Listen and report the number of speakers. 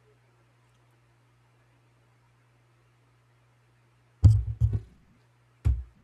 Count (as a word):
zero